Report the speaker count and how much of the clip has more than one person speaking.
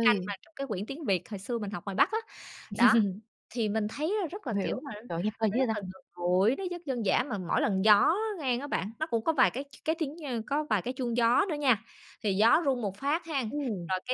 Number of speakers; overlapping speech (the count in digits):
2, about 8%